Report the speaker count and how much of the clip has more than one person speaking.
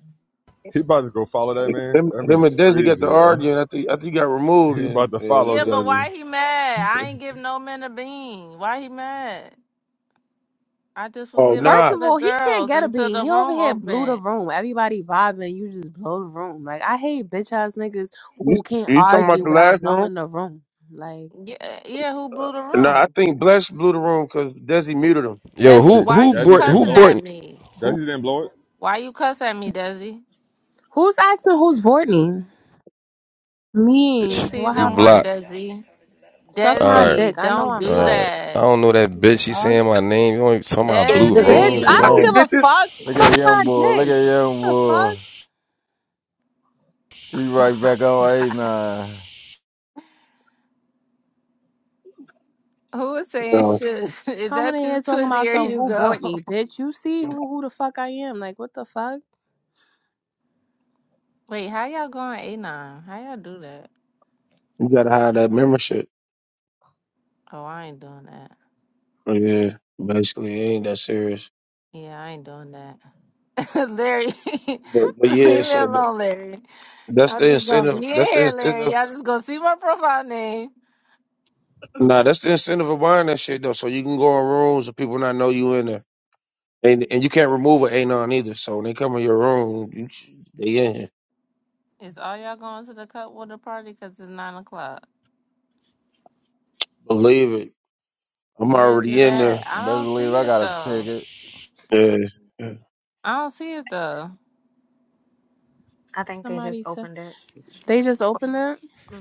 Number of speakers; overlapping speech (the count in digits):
7, about 22%